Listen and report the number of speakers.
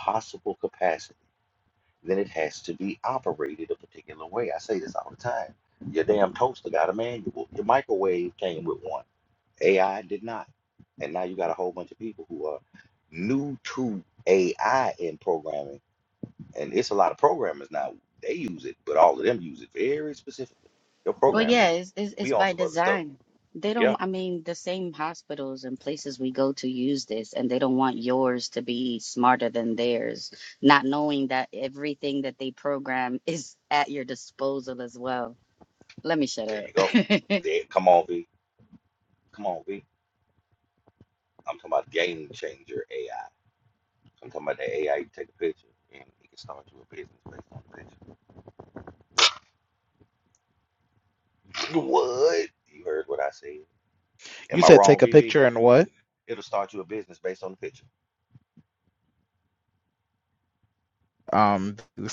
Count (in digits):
3